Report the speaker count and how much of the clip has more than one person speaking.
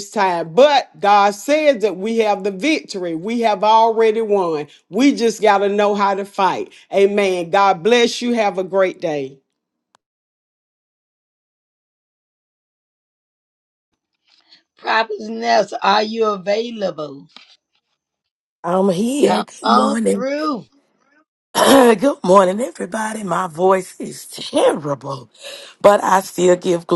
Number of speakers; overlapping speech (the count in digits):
3, about 4%